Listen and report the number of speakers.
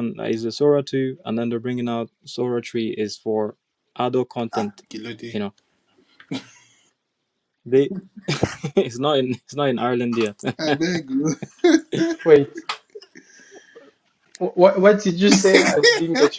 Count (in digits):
3